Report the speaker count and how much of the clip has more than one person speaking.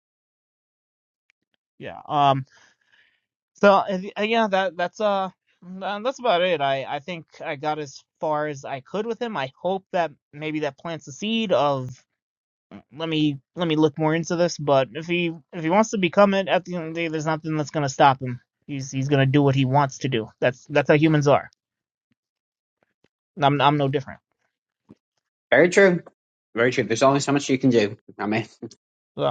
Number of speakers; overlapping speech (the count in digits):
2, no overlap